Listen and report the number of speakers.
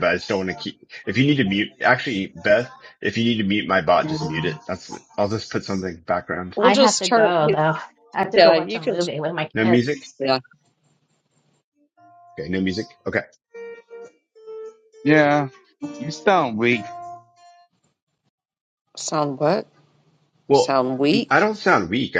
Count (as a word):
four